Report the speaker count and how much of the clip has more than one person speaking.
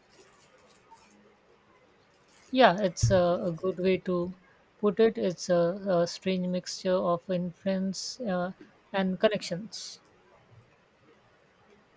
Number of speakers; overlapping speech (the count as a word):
one, no overlap